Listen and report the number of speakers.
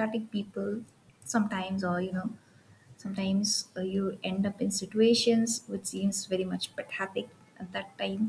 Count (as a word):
one